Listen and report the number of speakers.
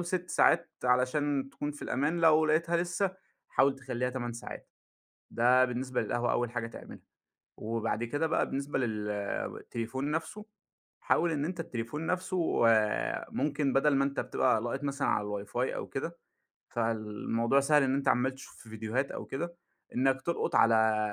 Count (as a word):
one